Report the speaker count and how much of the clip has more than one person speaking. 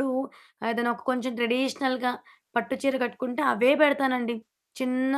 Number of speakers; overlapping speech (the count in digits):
1, no overlap